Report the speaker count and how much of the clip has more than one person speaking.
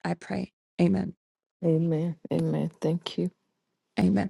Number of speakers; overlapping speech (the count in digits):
2, no overlap